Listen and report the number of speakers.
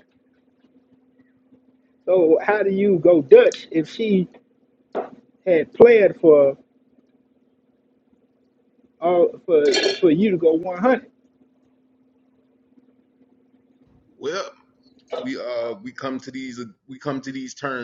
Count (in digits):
2